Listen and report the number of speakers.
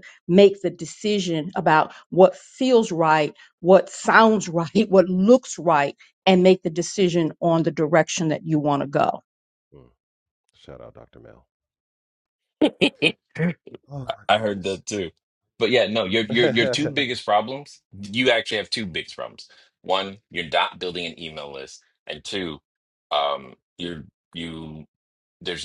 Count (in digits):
3